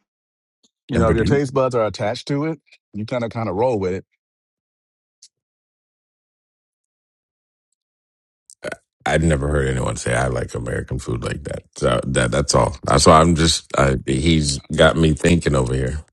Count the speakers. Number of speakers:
2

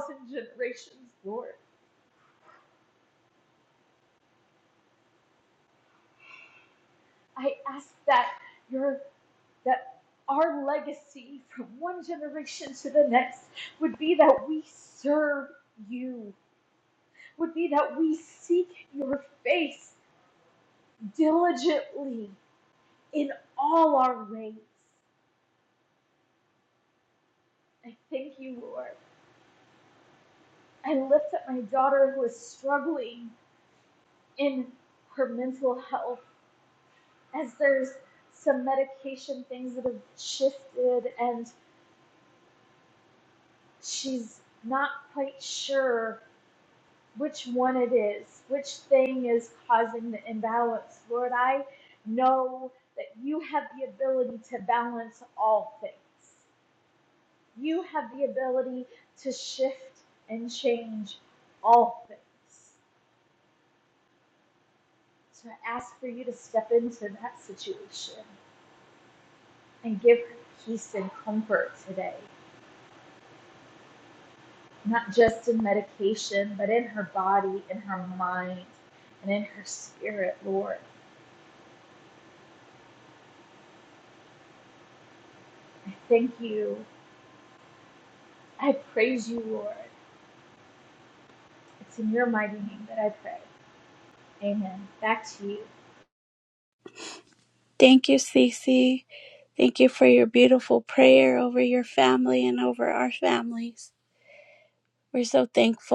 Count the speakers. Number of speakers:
2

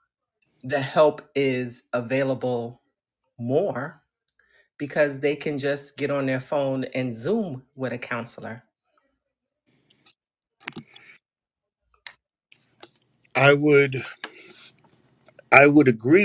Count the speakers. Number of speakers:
2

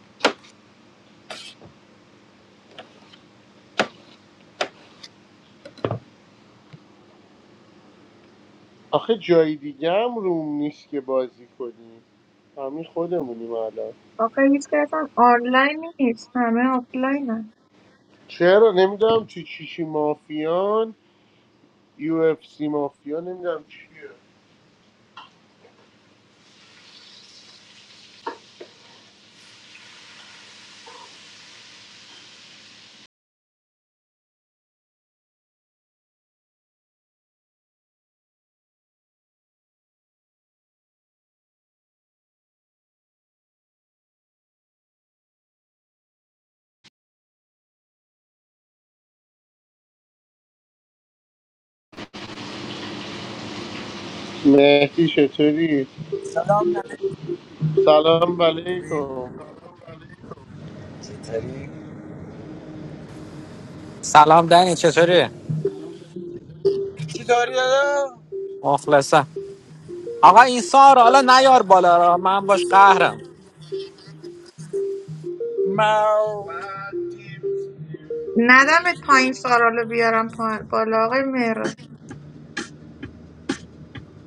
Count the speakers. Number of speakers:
4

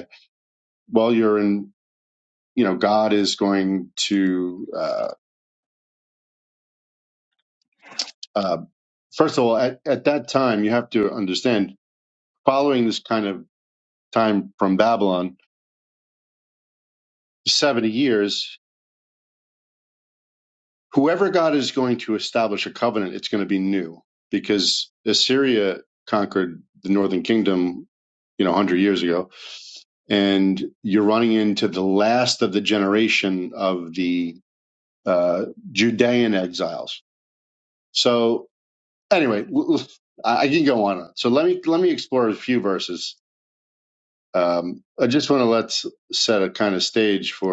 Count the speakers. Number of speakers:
1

